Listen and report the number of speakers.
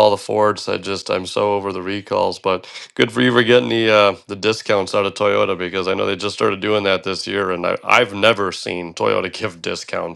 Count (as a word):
one